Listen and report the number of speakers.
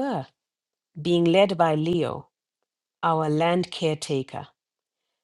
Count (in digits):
1